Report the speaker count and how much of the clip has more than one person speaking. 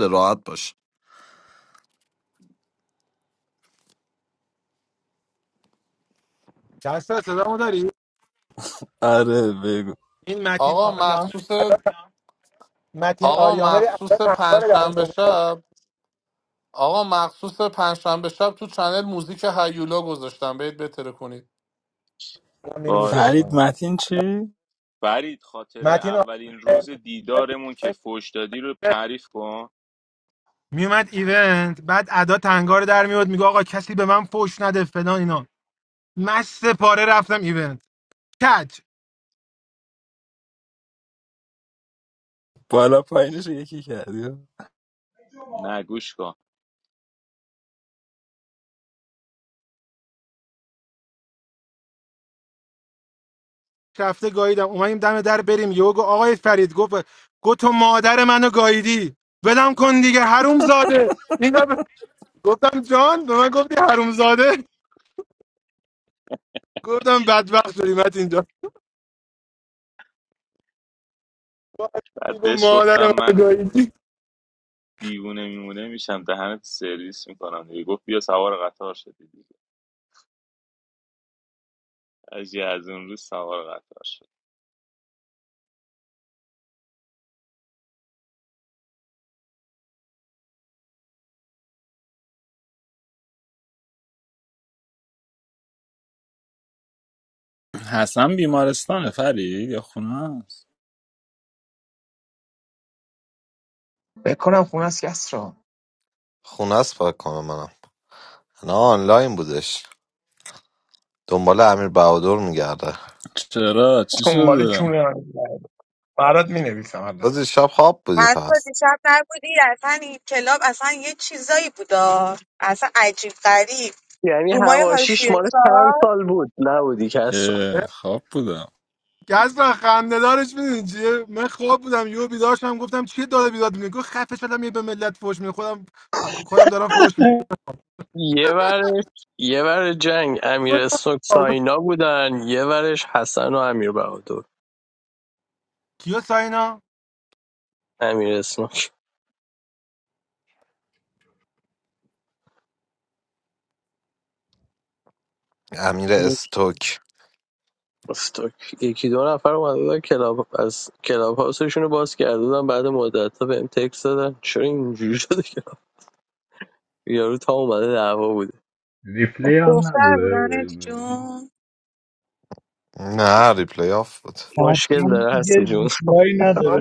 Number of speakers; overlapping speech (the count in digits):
9, about 6%